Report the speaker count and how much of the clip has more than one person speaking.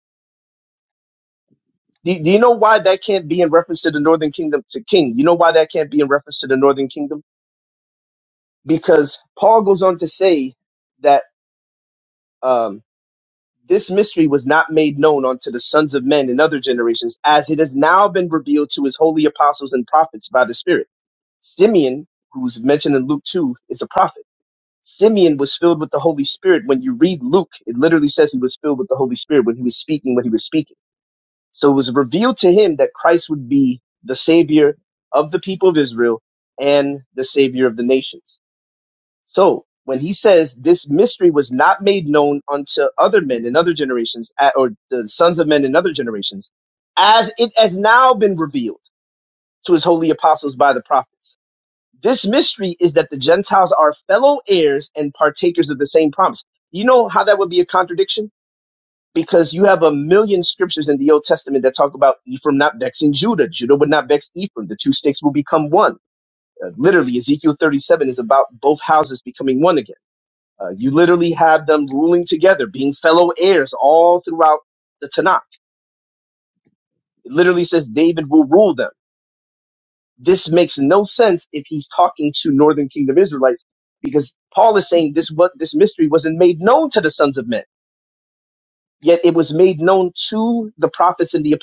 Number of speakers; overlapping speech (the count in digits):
1, no overlap